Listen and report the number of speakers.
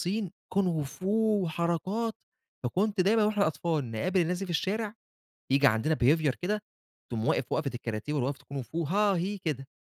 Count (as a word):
one